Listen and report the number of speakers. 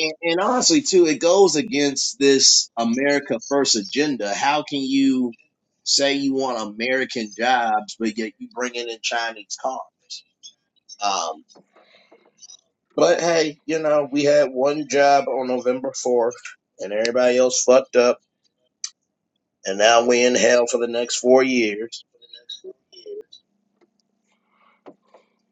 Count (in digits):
1